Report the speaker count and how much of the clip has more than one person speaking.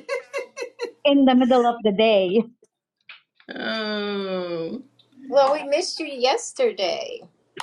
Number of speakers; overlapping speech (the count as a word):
three, no overlap